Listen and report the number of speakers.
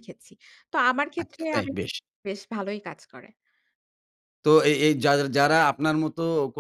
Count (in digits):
2